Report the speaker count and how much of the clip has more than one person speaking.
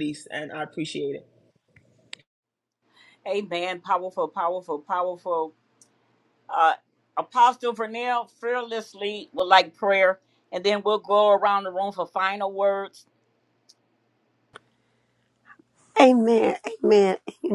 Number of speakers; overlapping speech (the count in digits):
3, no overlap